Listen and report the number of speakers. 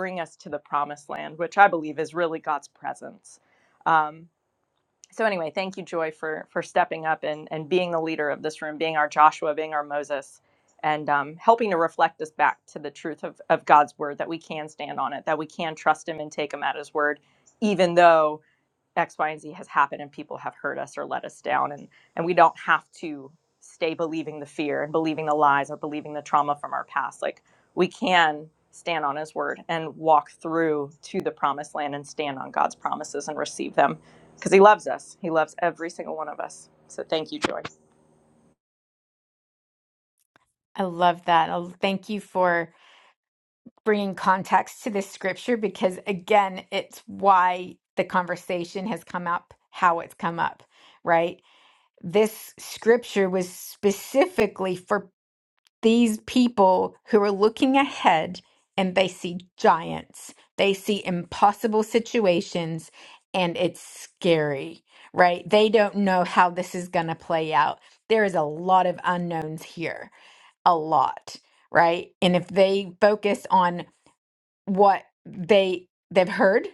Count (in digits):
2